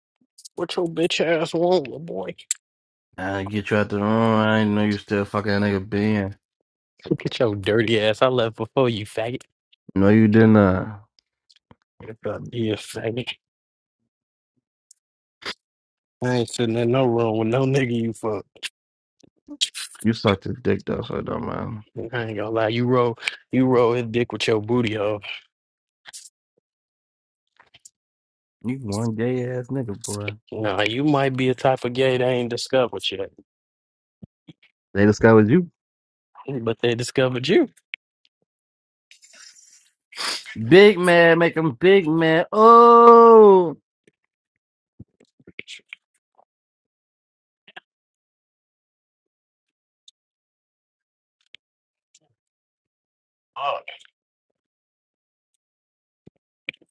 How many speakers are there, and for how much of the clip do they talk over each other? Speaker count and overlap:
2, no overlap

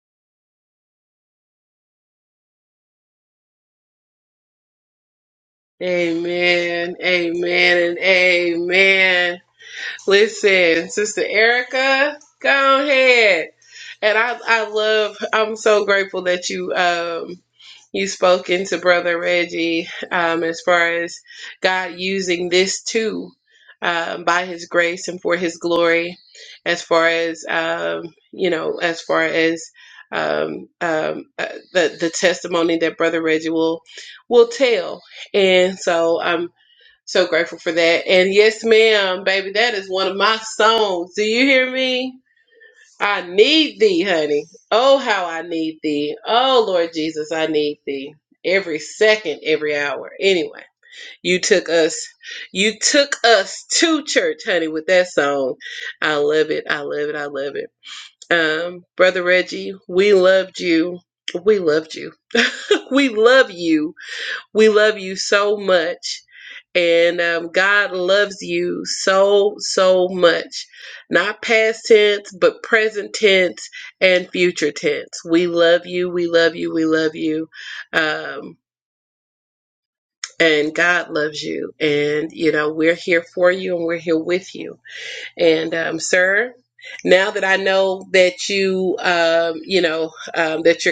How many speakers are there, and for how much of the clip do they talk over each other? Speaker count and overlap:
1, no overlap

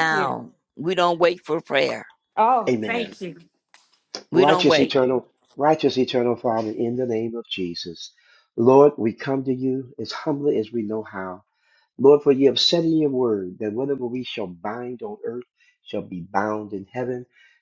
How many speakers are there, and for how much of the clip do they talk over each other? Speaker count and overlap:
3, about 8%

